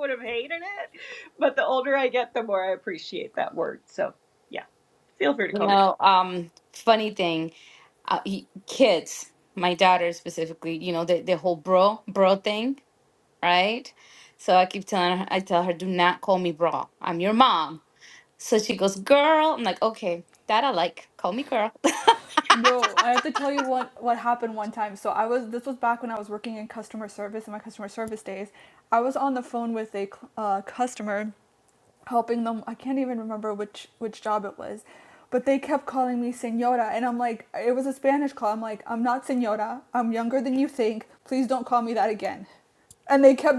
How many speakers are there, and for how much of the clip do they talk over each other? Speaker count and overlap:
3, about 1%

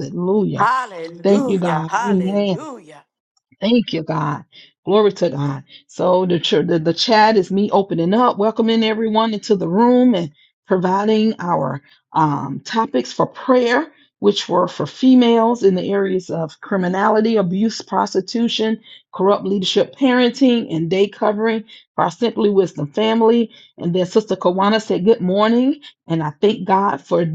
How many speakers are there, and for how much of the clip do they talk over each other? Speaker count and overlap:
2, about 5%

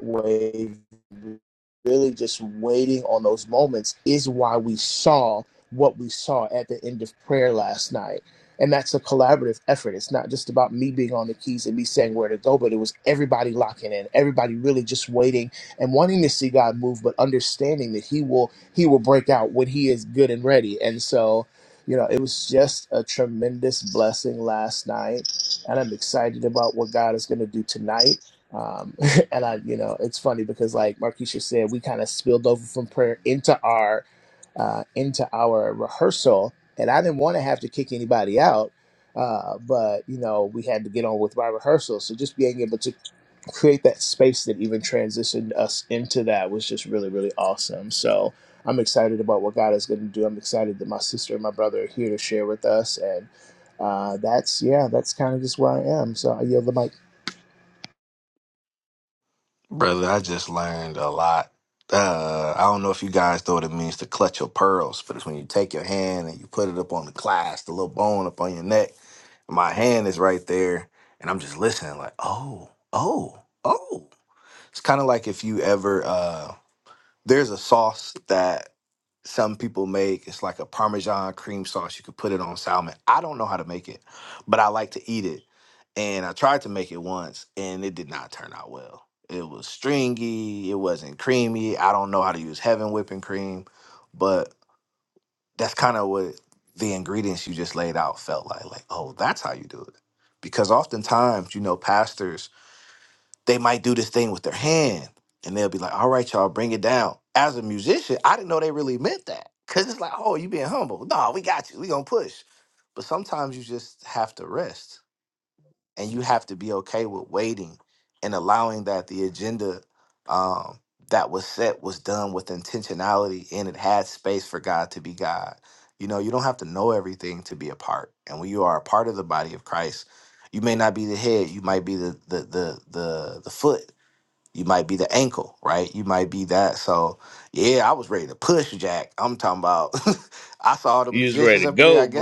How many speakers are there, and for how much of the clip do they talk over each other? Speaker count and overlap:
2, about 1%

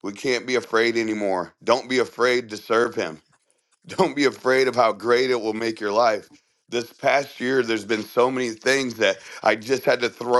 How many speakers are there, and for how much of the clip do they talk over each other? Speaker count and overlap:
1, no overlap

